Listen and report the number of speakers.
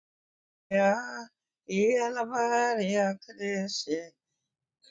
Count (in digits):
1